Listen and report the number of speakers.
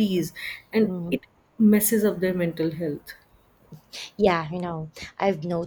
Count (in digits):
2